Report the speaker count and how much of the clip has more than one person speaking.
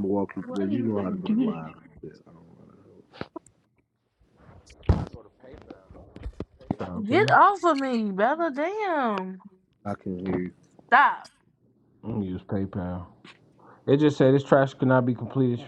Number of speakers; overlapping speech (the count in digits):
3, about 9%